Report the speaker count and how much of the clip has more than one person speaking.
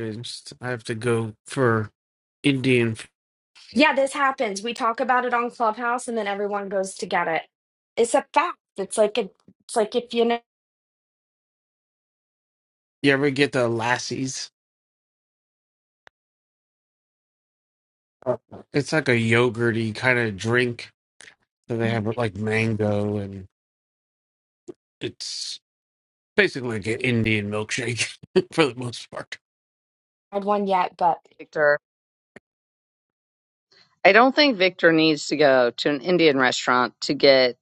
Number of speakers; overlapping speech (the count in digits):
3, no overlap